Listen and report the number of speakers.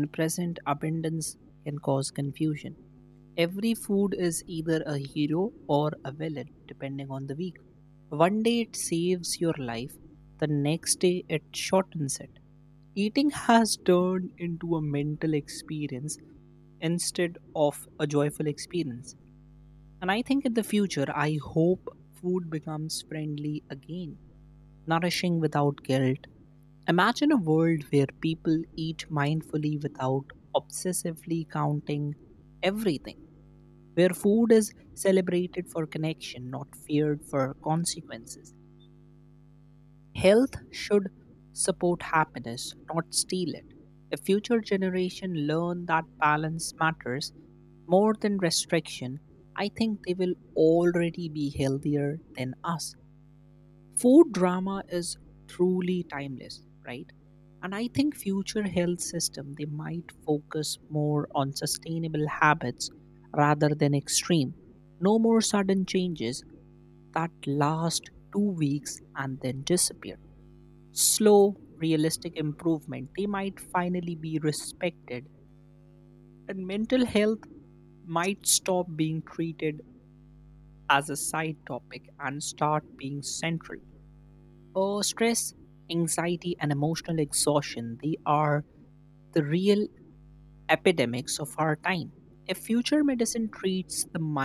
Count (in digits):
1